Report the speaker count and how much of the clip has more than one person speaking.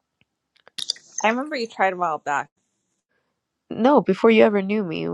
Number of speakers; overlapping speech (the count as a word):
two, no overlap